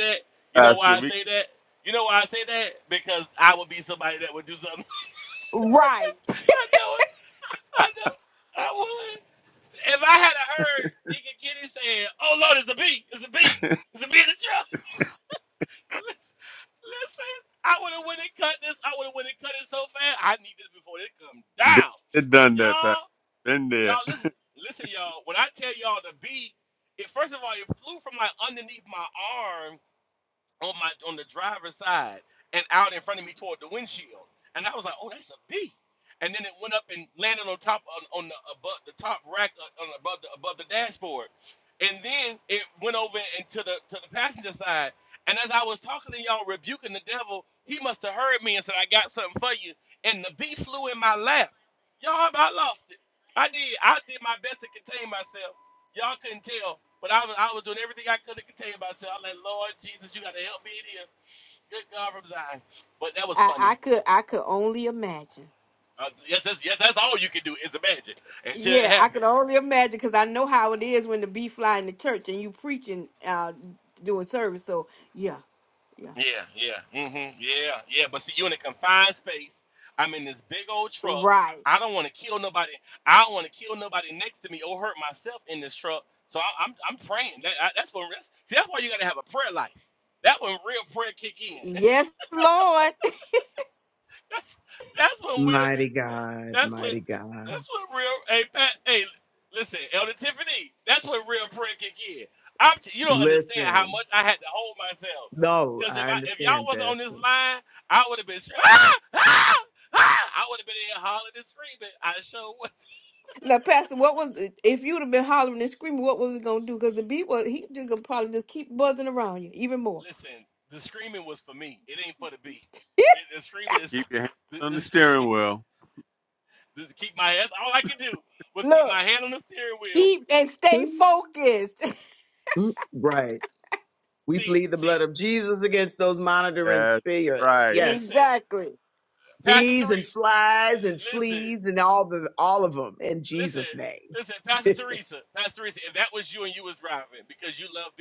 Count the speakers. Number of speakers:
4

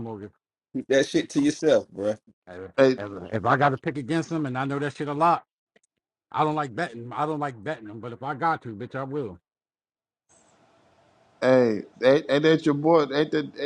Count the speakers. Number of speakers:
3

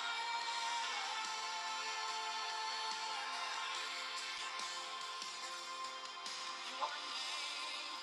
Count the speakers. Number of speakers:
0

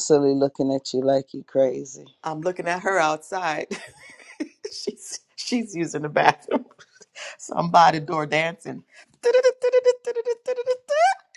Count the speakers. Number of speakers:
2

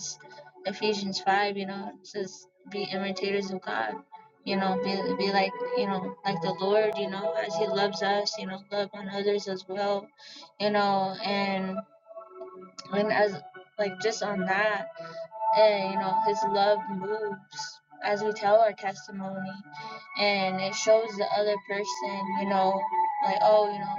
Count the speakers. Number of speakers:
1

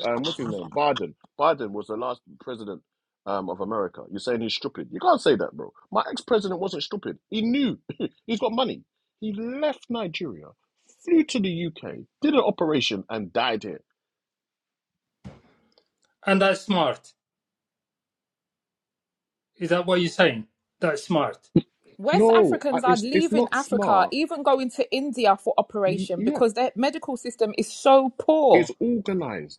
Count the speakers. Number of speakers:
3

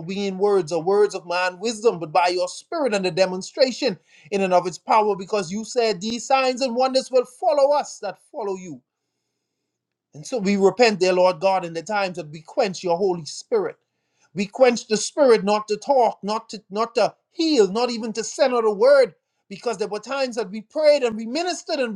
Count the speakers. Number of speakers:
1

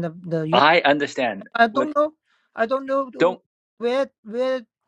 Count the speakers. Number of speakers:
2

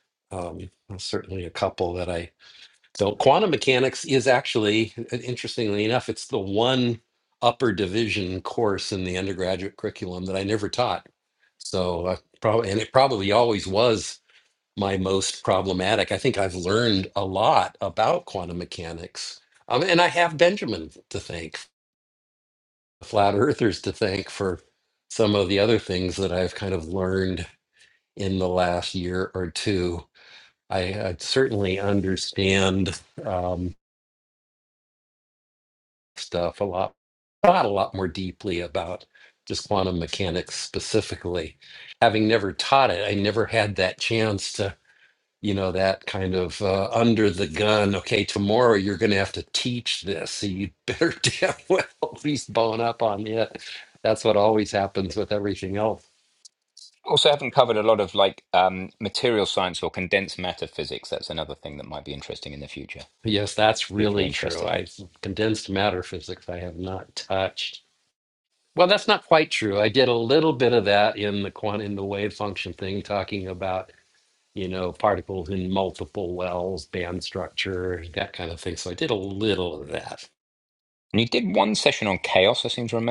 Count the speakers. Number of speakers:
2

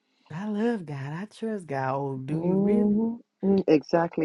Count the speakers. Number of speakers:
2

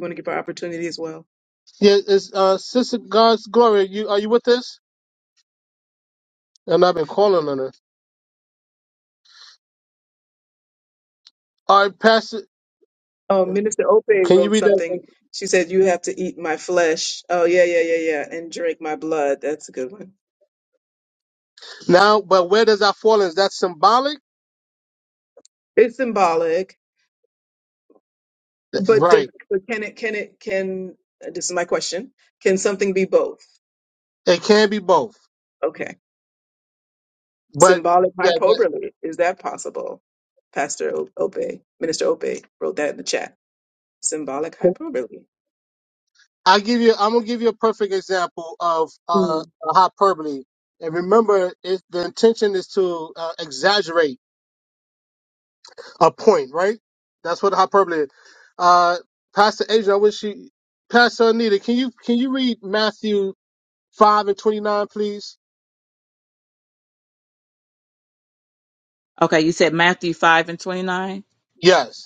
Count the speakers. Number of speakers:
3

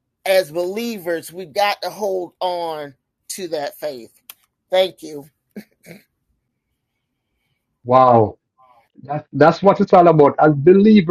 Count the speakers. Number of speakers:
2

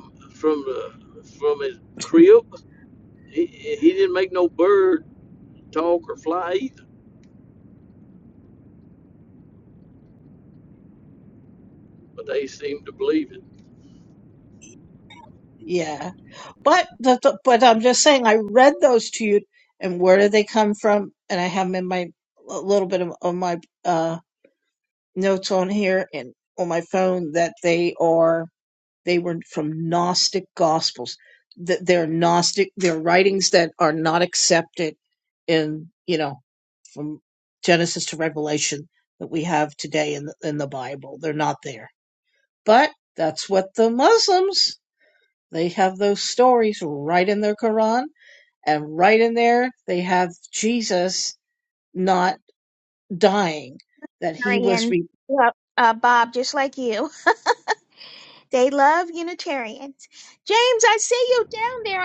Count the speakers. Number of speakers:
3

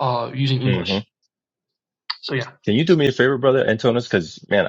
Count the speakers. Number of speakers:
2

